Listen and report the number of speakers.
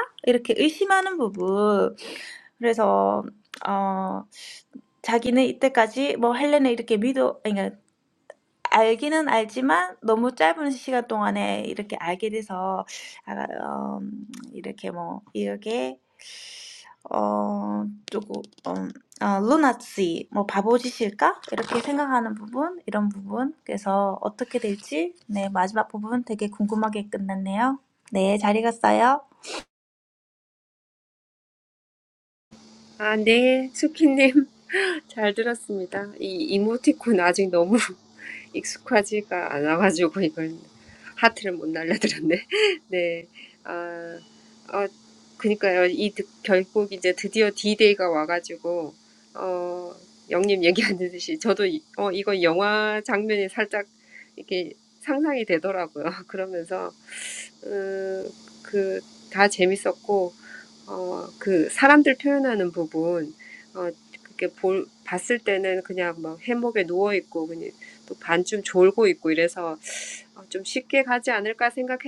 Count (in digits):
2